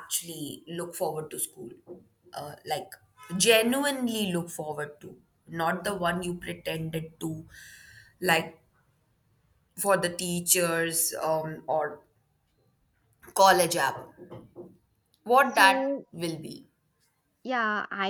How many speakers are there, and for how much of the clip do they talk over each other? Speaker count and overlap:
2, about 3%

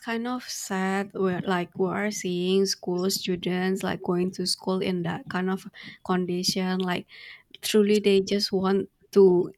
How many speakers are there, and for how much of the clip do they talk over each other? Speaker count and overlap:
1, no overlap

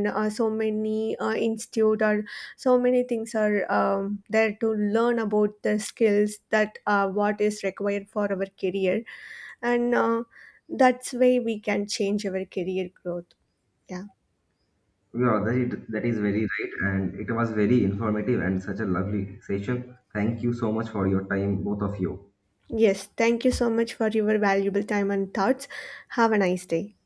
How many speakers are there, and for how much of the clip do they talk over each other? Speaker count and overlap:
2, no overlap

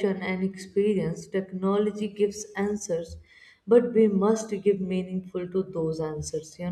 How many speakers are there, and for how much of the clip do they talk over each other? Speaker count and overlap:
1, no overlap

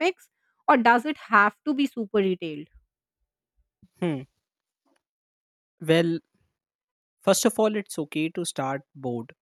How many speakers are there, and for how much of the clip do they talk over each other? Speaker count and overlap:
2, no overlap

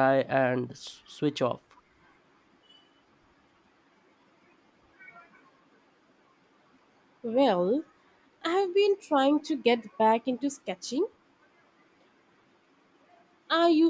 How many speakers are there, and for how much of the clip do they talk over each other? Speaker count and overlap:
2, no overlap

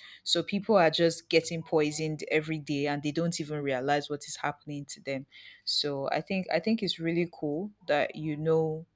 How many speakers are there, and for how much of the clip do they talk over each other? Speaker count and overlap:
1, no overlap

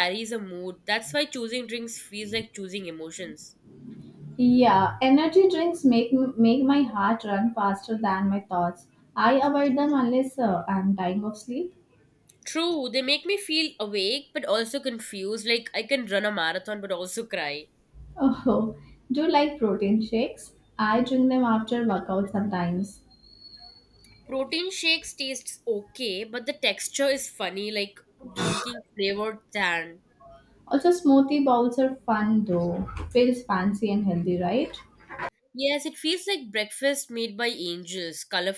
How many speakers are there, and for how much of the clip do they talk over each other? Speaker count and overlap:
2, no overlap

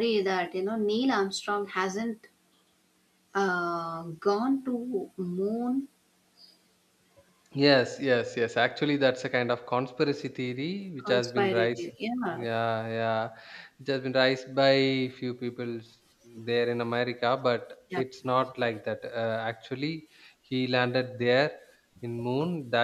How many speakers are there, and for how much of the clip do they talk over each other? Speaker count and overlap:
2, about 5%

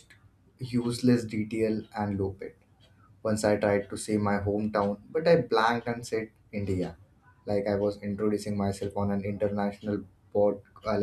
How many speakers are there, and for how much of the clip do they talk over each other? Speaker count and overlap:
1, no overlap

